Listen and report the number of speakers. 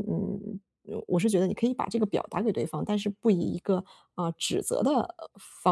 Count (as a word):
one